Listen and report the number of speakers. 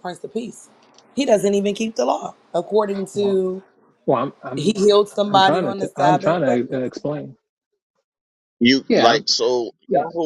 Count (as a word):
three